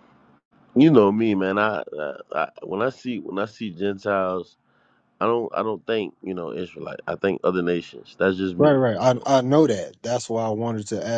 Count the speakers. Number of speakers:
2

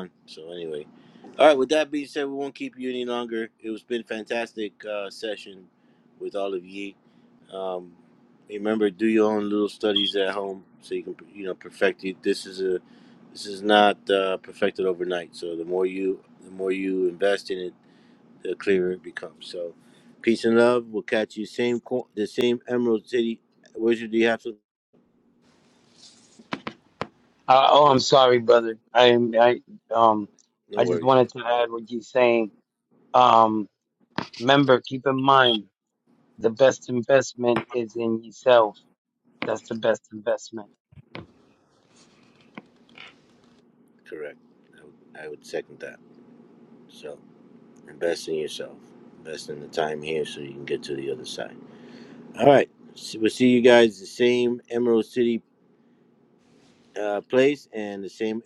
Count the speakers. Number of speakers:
2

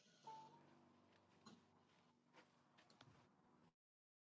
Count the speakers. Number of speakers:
0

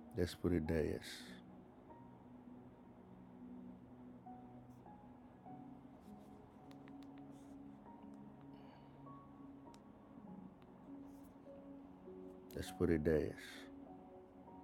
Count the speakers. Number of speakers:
1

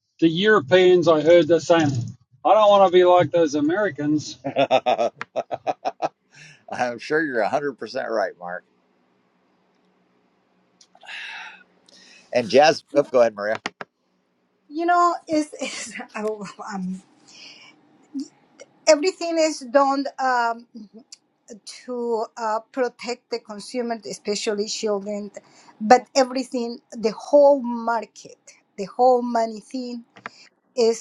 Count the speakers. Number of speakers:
3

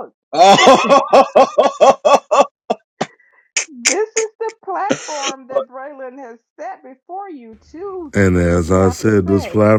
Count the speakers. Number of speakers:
3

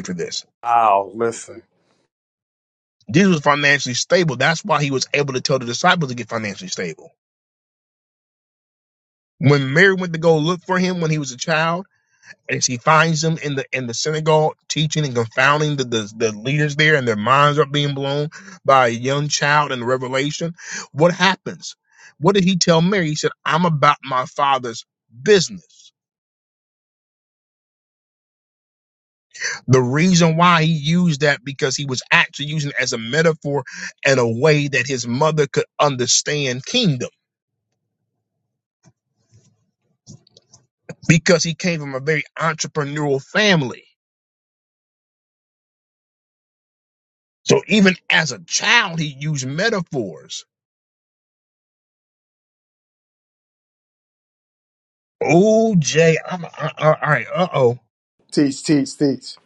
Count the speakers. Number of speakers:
2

